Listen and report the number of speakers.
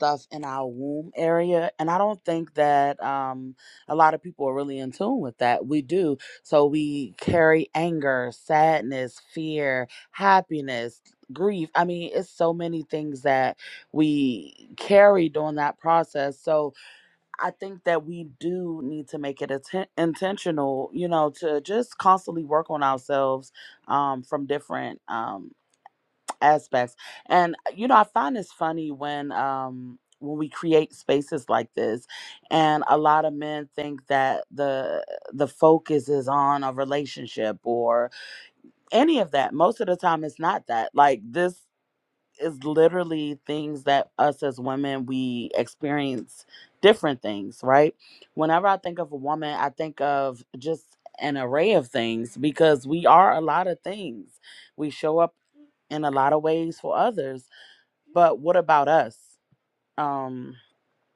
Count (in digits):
1